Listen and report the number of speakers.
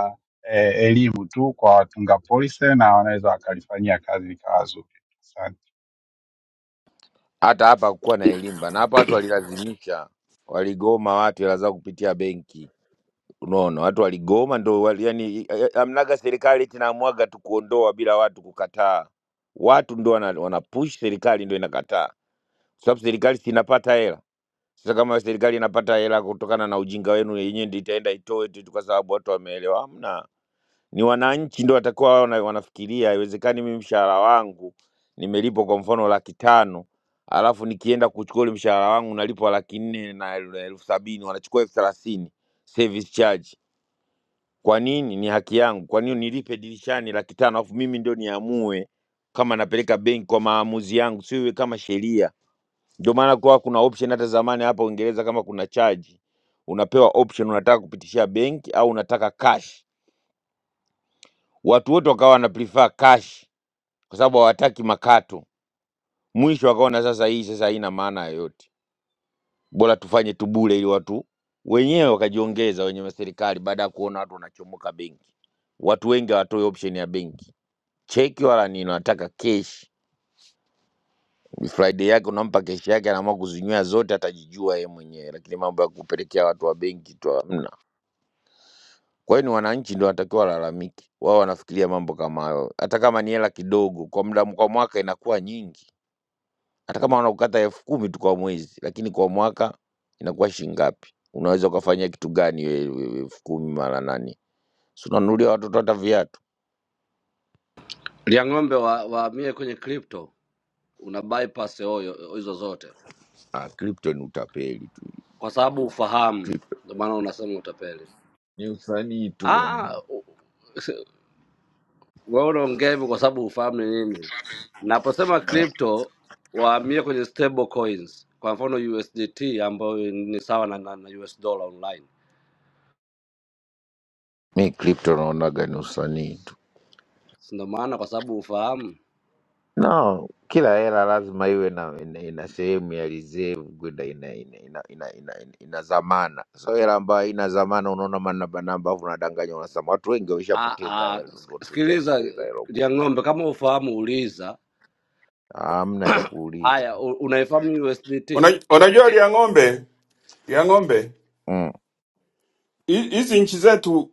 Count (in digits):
4